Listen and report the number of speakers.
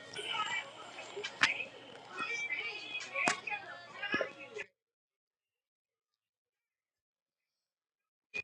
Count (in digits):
0